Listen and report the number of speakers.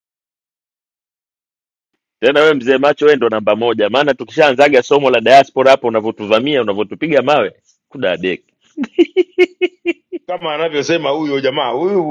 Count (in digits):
2